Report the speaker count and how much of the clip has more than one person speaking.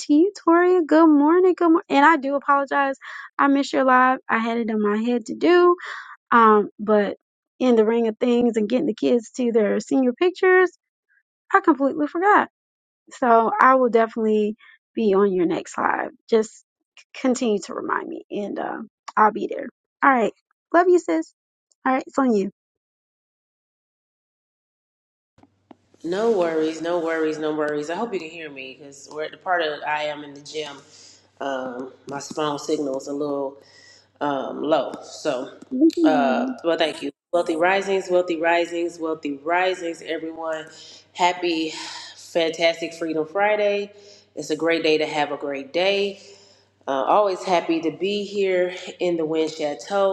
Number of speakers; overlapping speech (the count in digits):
2, about 1%